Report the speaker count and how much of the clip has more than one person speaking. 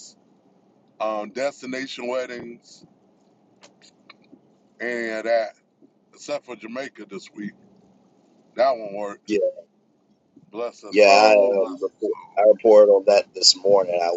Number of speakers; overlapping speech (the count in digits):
2, about 6%